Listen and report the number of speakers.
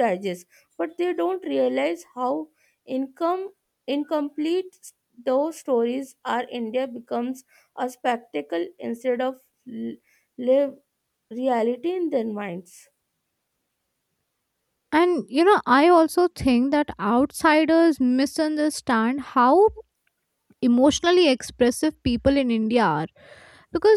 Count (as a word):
two